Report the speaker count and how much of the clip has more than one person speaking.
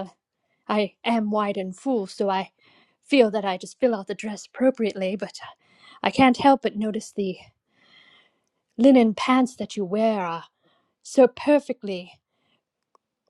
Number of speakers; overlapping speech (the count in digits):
1, no overlap